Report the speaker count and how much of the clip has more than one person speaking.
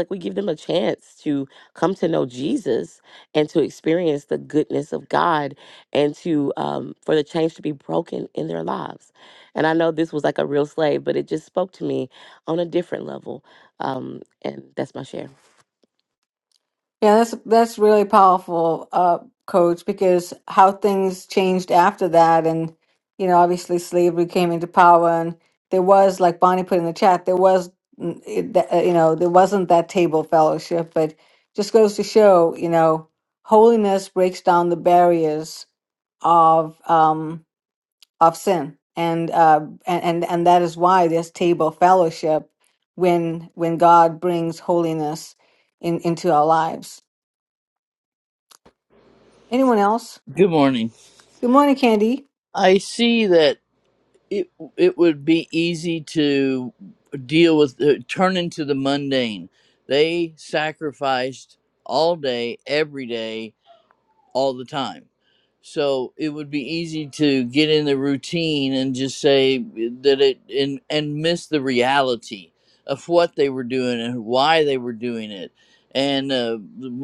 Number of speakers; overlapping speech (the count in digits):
3, no overlap